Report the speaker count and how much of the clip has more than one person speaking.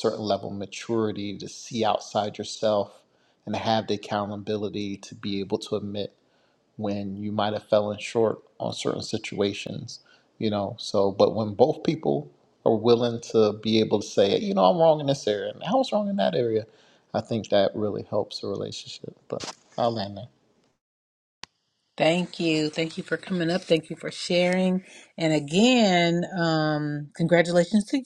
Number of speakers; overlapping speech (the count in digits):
2, no overlap